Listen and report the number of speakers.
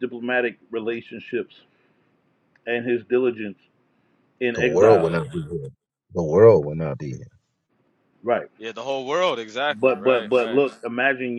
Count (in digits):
3